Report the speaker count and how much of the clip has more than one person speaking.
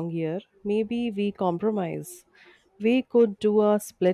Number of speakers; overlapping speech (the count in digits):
1, no overlap